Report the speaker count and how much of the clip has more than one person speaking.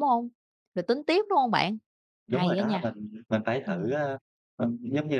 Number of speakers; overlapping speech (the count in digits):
2, about 15%